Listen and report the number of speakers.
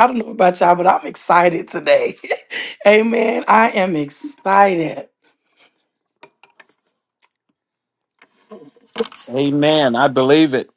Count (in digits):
2